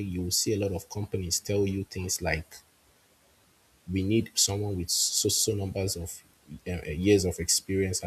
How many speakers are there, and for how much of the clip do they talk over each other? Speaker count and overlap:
one, no overlap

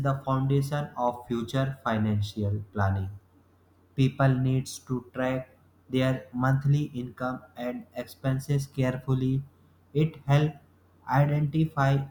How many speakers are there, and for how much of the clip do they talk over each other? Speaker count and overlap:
one, no overlap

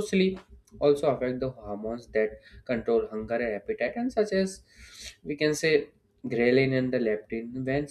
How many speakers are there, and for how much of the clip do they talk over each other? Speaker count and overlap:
one, no overlap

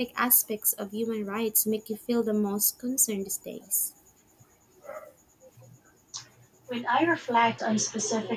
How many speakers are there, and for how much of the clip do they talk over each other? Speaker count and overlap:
two, no overlap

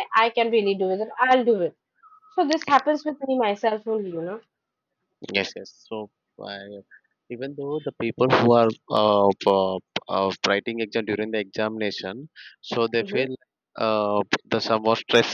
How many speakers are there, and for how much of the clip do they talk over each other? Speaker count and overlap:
two, about 2%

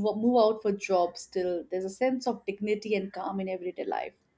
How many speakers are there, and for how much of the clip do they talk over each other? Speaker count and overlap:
one, no overlap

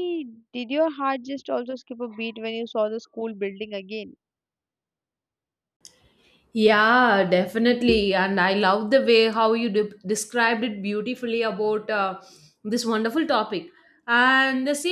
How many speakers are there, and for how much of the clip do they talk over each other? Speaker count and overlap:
two, no overlap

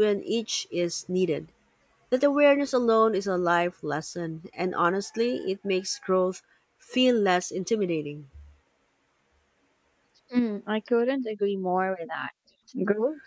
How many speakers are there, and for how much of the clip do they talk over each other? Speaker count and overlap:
two, no overlap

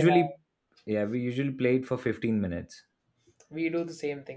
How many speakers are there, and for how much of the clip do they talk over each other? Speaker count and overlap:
two, about 7%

